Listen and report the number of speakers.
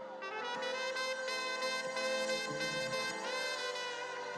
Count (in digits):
0